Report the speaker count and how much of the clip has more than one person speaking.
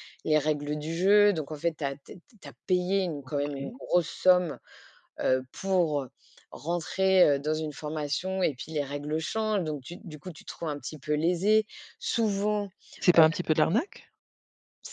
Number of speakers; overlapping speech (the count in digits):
2, about 3%